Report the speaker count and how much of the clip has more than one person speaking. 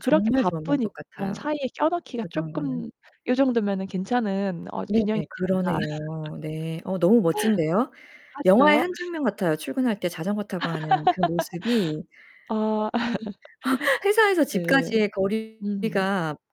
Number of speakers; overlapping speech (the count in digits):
2, about 25%